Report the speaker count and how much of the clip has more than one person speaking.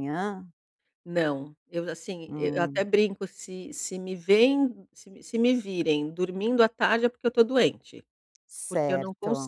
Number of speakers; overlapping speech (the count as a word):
two, about 13%